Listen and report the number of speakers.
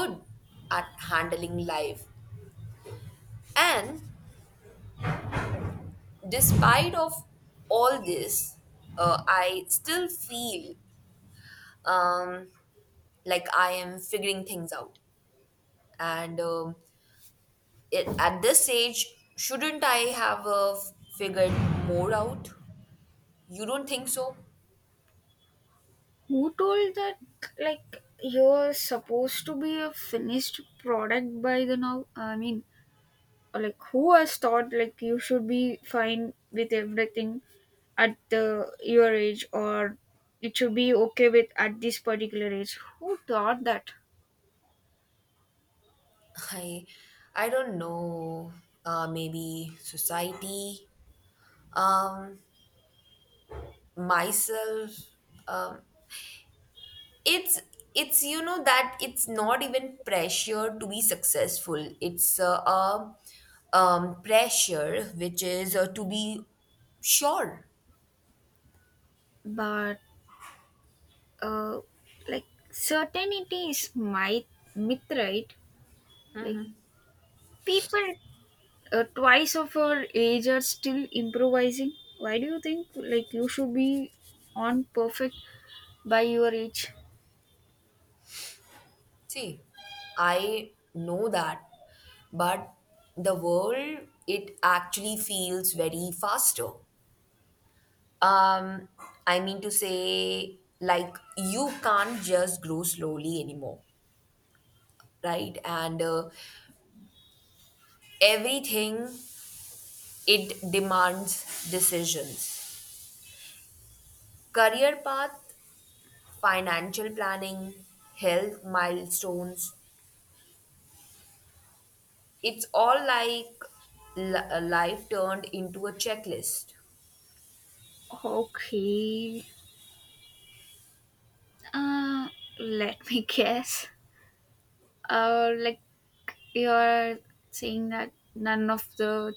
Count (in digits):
2